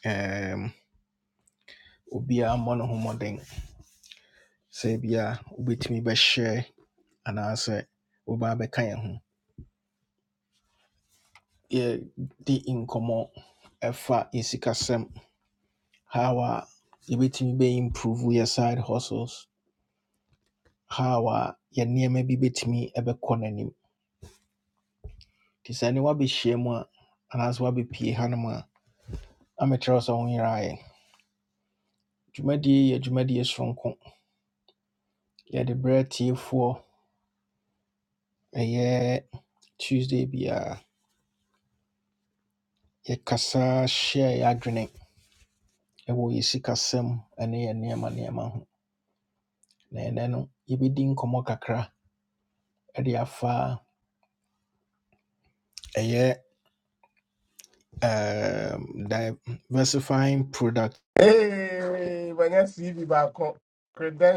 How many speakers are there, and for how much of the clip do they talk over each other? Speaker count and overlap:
2, no overlap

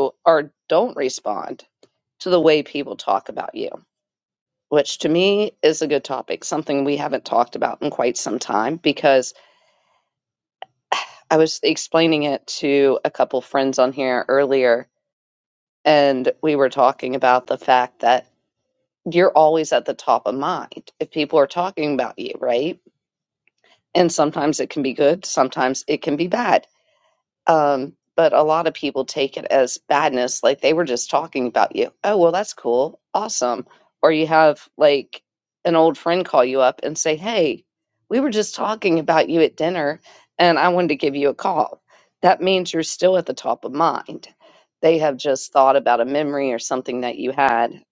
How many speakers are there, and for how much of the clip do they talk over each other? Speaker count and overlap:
1, no overlap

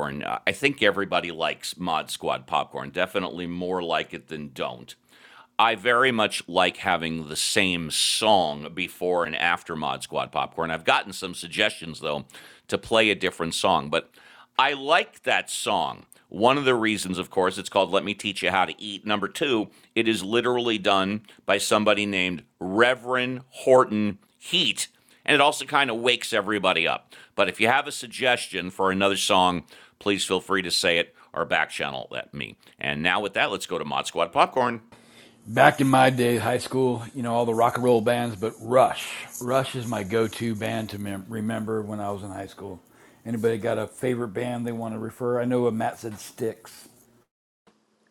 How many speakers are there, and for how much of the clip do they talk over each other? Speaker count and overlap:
2, no overlap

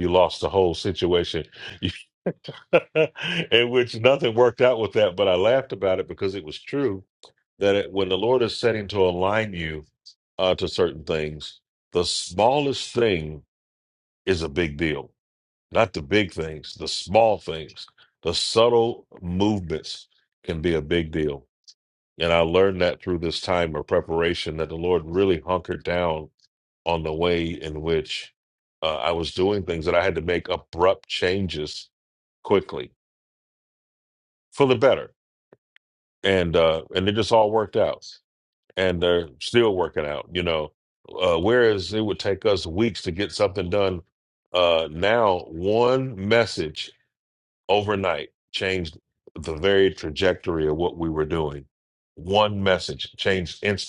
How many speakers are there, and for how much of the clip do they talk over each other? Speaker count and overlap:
1, no overlap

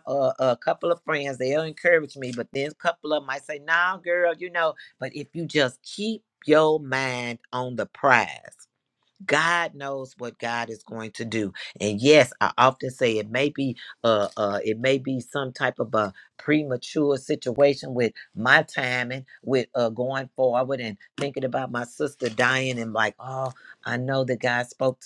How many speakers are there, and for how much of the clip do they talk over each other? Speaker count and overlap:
1, no overlap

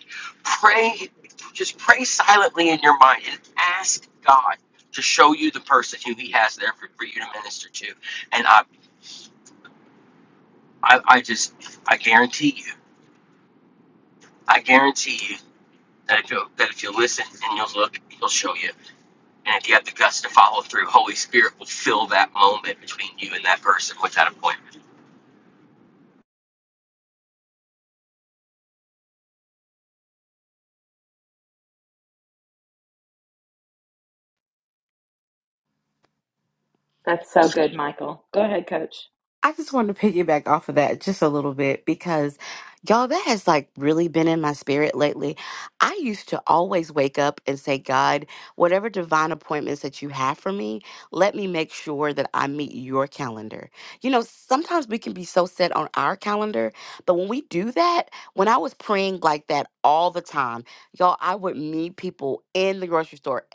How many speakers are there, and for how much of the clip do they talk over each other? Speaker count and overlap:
3, no overlap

